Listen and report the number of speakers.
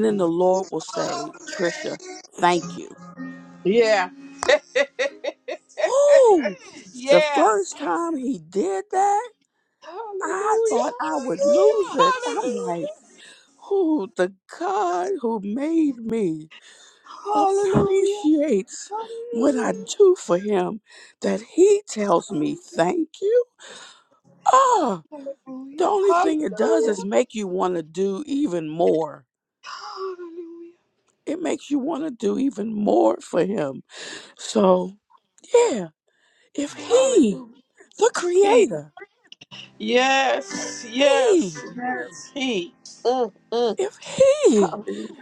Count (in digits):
2